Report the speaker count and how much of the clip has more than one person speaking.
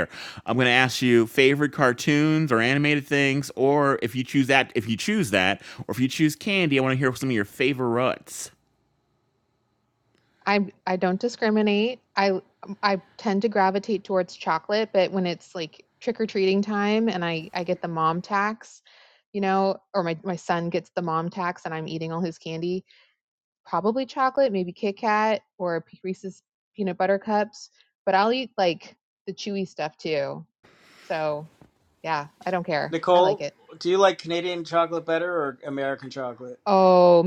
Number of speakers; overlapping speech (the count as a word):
three, about 1%